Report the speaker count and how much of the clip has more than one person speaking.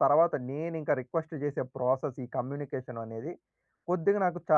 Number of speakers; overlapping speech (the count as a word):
one, no overlap